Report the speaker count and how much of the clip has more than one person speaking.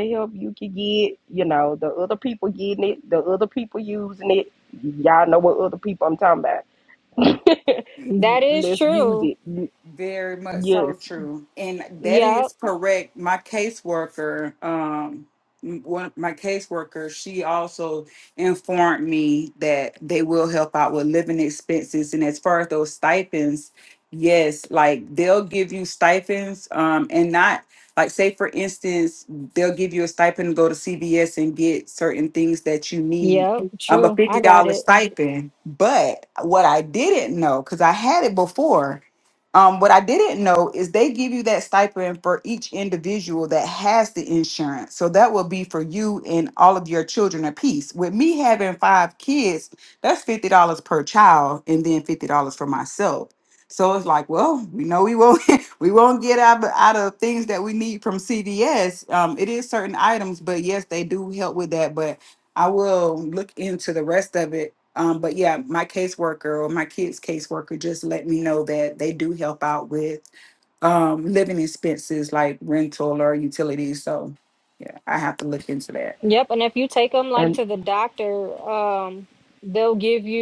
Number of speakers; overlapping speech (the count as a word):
three, about 4%